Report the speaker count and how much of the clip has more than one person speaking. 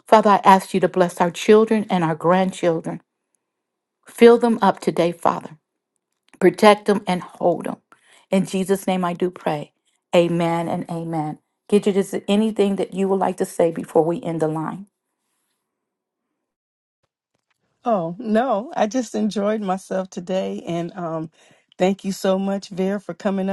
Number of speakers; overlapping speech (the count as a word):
two, no overlap